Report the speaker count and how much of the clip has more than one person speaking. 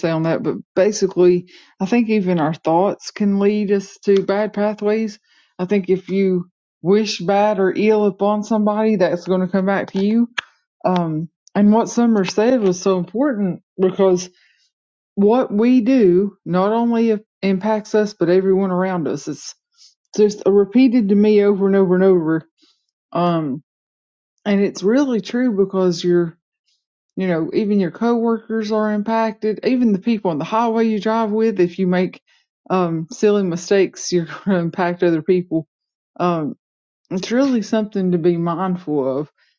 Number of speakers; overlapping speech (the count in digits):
1, no overlap